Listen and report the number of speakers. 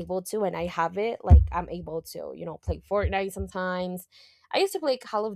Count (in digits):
1